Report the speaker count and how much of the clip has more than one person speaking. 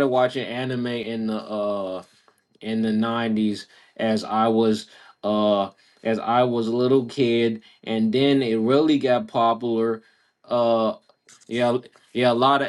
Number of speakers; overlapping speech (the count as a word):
one, no overlap